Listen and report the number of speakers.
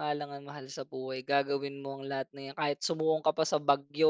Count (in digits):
1